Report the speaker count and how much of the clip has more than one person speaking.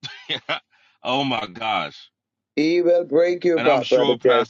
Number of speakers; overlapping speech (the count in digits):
2, about 21%